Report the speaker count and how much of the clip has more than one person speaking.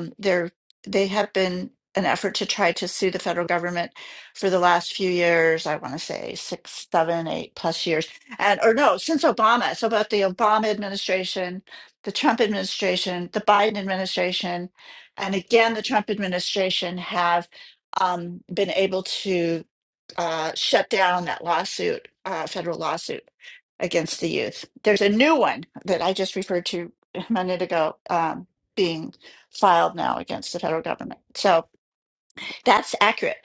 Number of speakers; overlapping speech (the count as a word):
one, no overlap